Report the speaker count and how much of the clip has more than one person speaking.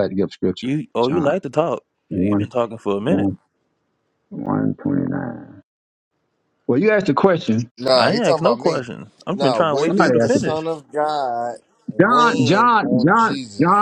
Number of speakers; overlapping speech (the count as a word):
three, about 34%